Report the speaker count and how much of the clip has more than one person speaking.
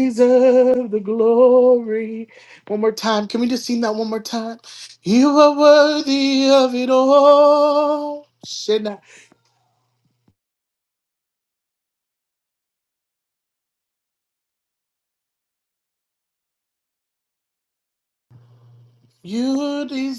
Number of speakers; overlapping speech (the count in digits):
1, no overlap